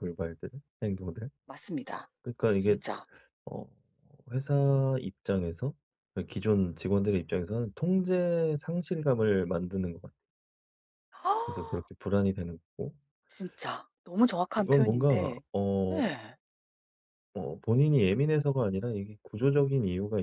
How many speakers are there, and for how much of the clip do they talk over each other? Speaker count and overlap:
two, about 6%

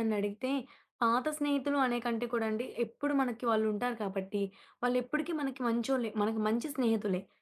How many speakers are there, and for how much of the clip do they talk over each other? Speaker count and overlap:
one, no overlap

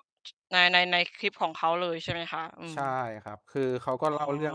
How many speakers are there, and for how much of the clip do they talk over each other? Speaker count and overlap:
two, about 12%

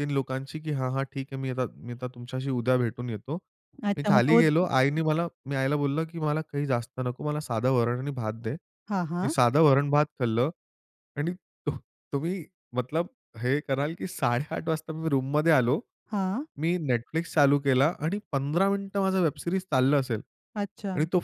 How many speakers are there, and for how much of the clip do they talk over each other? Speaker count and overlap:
two, about 3%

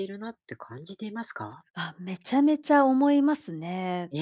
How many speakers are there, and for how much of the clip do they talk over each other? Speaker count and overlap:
two, no overlap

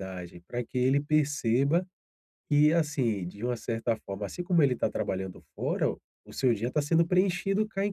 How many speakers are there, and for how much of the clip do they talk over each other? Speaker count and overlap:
one, no overlap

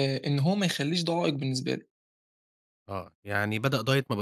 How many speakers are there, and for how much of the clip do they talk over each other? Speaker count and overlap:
two, no overlap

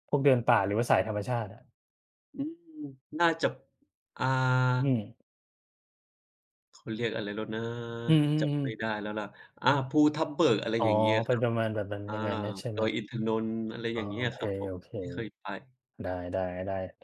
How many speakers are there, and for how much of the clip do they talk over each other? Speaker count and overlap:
two, about 10%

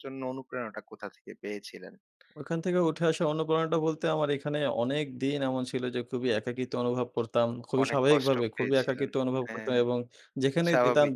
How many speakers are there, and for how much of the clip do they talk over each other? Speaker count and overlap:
two, about 20%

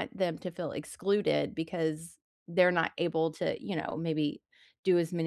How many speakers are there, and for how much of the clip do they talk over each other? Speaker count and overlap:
one, no overlap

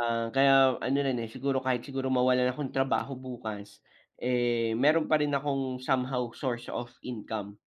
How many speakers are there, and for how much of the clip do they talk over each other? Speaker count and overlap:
one, no overlap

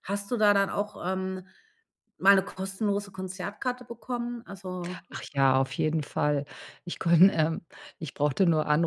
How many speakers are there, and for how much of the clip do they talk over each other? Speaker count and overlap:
two, no overlap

